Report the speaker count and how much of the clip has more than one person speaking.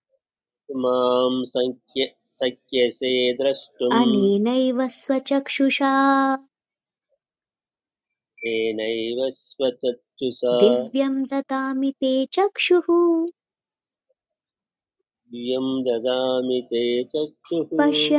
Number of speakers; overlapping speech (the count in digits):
2, about 1%